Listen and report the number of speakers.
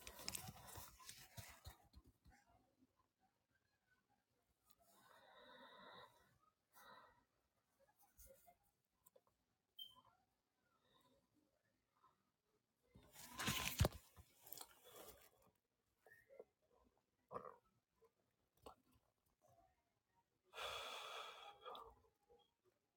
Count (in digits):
0